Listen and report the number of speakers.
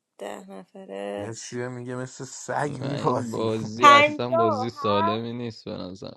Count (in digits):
3